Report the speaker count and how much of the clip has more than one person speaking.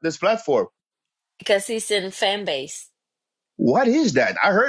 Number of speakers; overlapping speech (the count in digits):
2, no overlap